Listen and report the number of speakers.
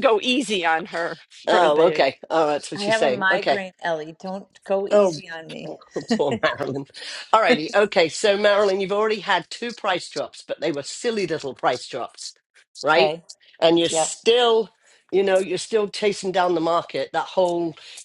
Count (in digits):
3